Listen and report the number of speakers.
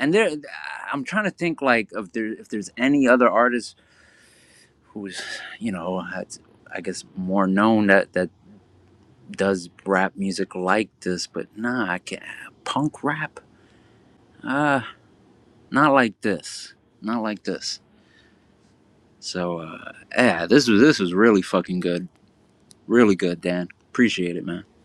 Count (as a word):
one